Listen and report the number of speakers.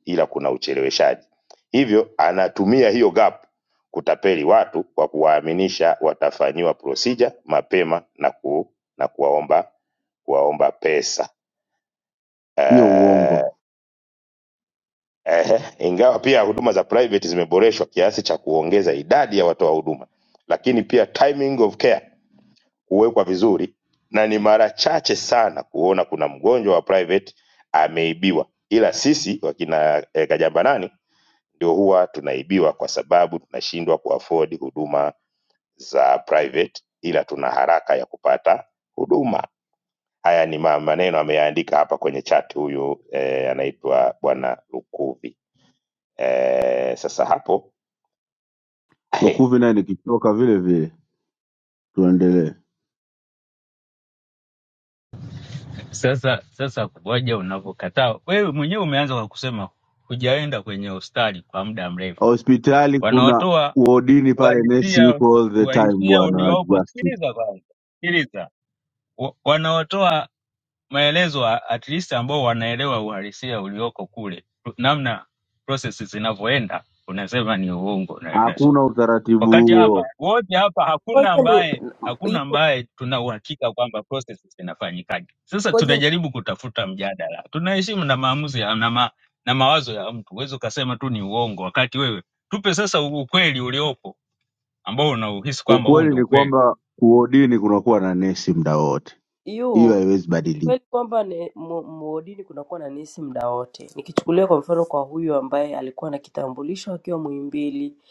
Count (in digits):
4